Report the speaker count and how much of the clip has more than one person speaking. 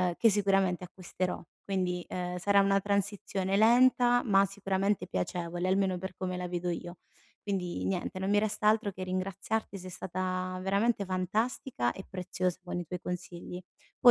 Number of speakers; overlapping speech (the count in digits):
1, no overlap